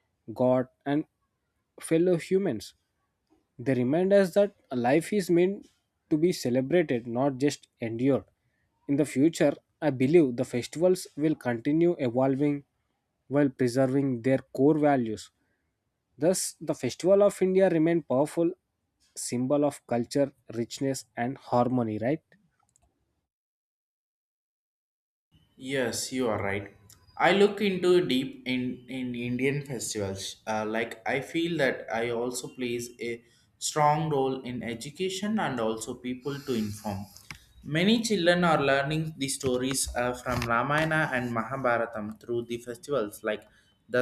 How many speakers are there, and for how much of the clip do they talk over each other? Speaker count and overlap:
2, no overlap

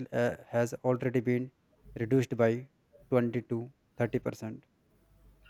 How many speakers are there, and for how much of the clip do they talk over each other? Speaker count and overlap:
1, no overlap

